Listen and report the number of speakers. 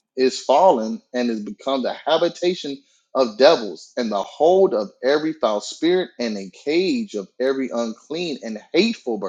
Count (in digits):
1